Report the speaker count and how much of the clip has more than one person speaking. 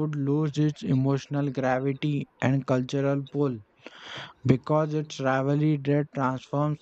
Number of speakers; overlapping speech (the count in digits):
1, no overlap